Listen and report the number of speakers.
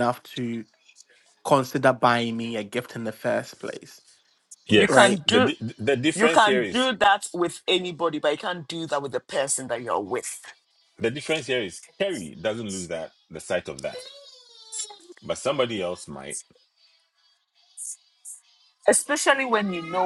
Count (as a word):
three